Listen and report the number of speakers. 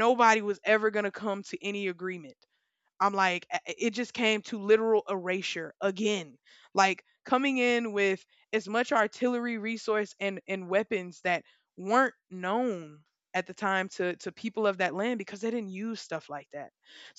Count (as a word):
one